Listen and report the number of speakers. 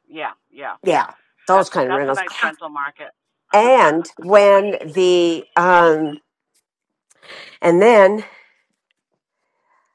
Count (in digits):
2